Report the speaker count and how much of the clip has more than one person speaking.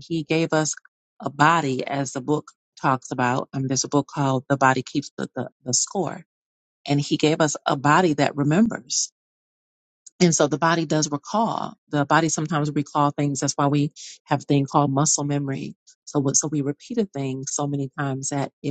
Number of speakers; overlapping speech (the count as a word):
one, no overlap